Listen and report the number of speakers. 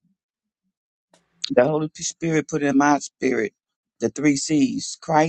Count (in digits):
1